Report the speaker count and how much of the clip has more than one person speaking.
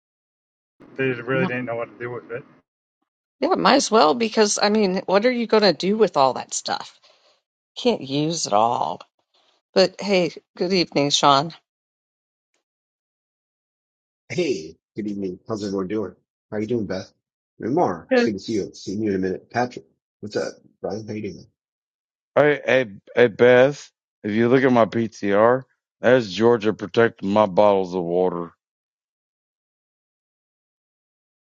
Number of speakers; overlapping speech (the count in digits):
4, about 1%